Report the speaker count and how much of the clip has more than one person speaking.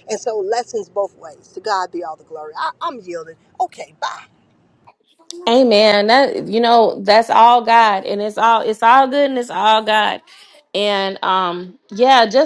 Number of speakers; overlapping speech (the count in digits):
2, no overlap